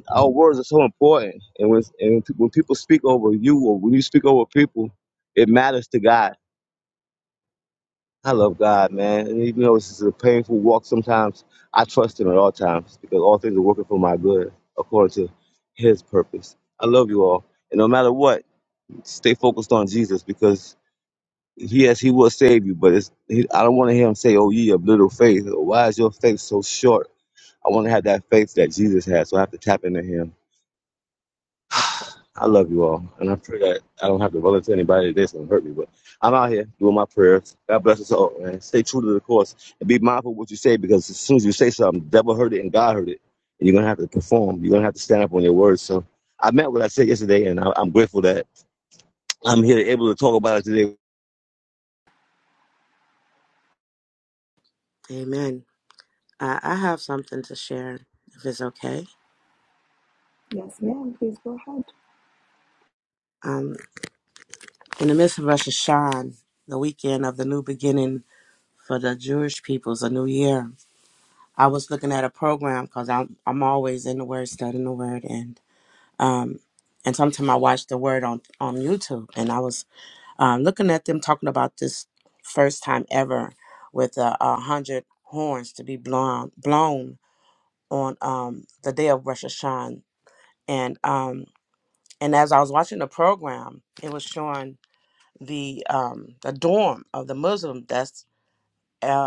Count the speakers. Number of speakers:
three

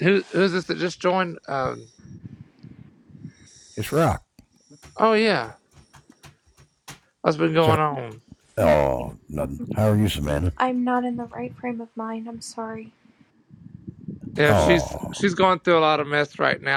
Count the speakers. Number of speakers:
three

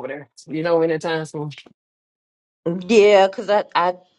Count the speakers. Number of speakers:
two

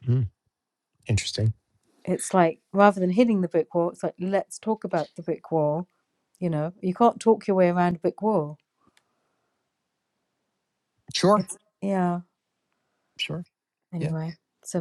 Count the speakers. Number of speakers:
two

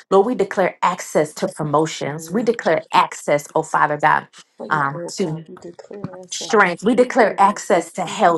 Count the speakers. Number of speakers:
two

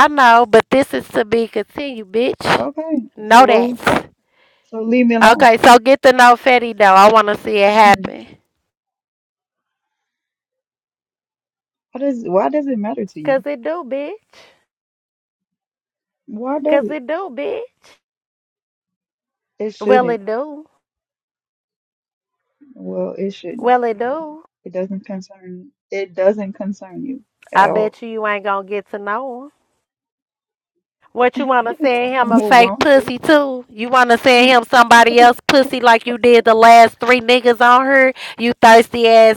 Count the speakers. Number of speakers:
two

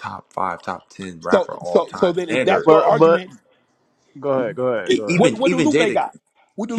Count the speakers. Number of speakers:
three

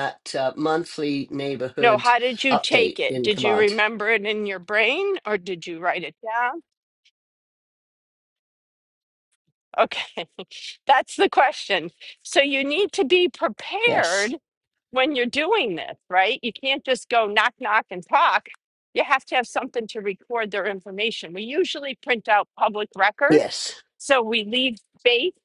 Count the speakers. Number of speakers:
two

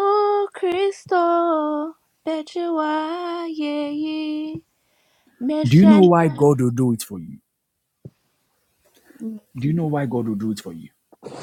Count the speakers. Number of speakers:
two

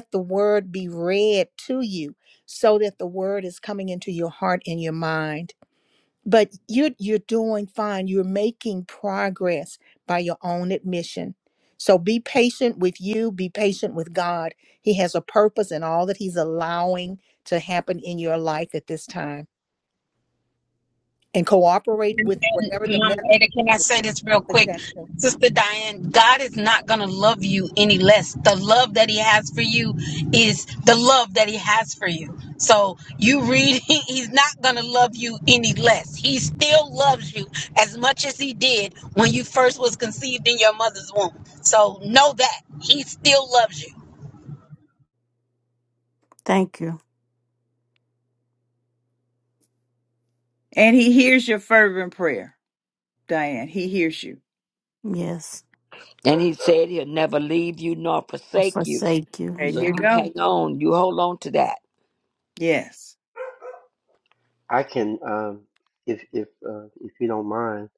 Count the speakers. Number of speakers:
six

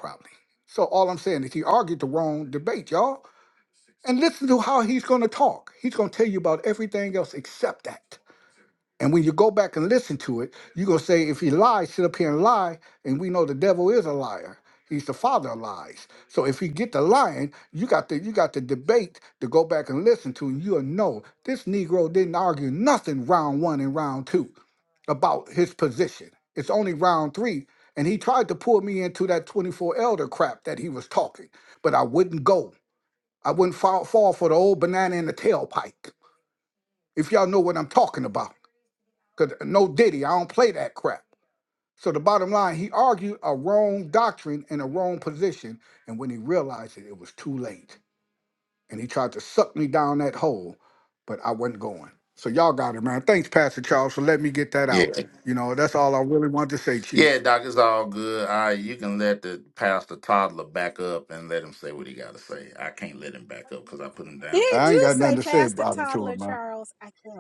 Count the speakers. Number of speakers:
three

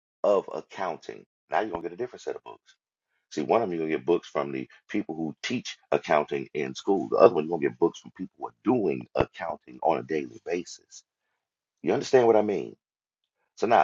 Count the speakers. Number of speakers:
one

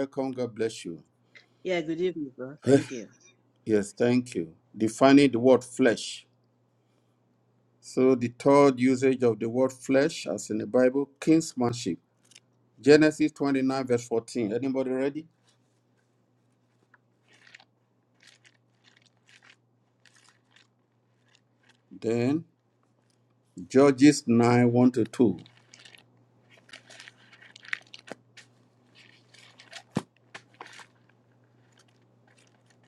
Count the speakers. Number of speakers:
two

